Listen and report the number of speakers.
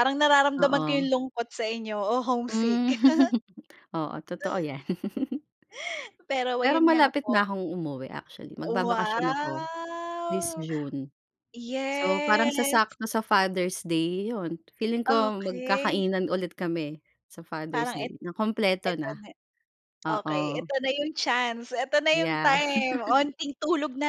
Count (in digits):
2